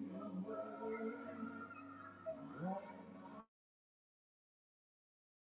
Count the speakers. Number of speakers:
0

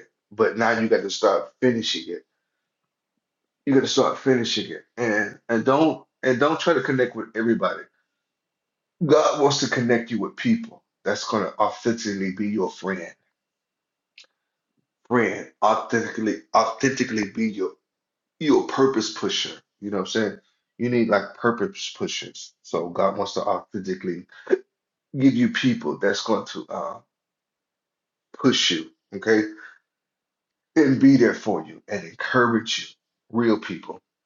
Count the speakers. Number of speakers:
1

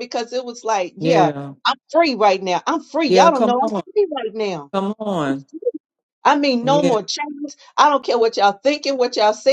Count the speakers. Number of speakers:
2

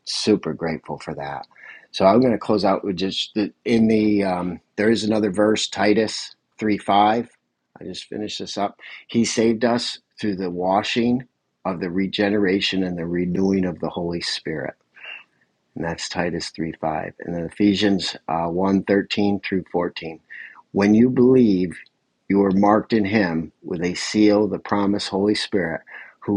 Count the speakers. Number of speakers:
1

